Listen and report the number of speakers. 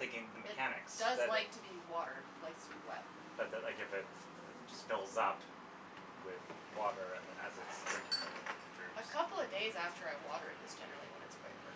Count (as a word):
two